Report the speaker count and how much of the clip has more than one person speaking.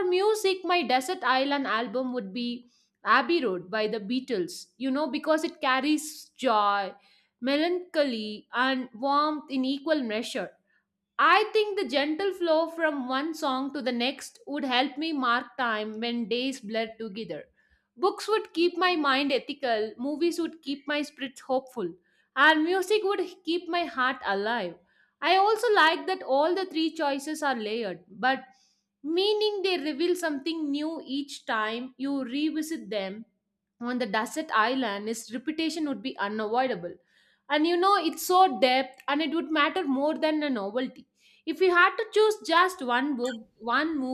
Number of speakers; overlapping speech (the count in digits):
1, no overlap